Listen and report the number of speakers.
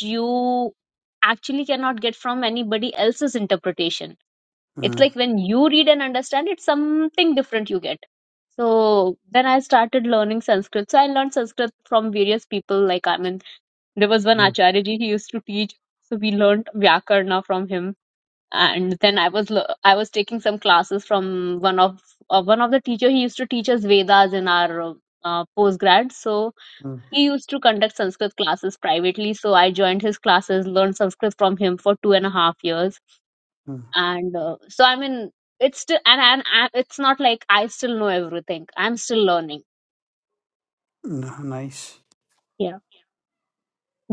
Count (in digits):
2